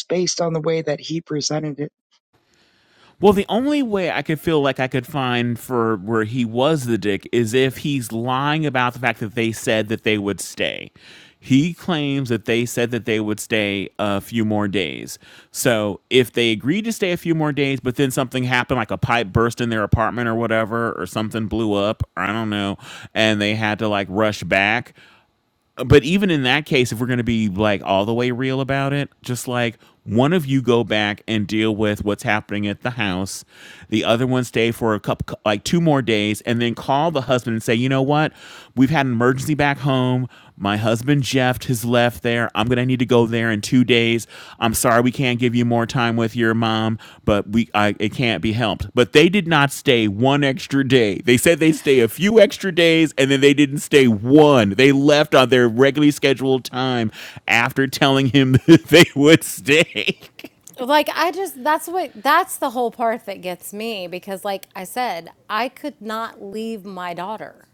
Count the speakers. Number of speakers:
three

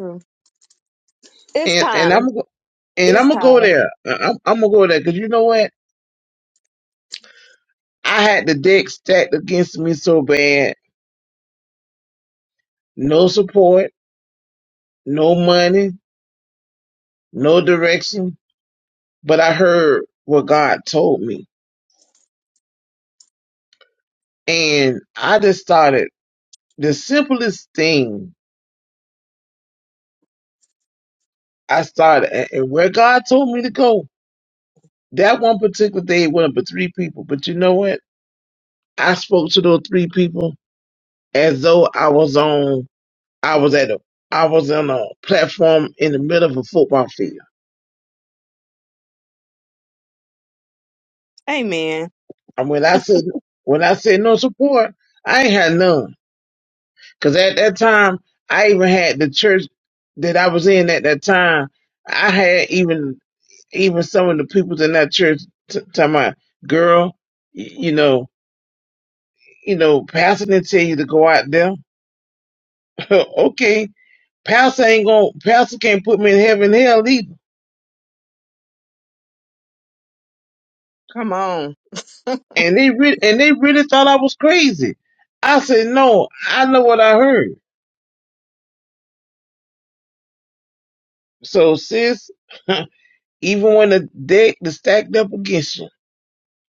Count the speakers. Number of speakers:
two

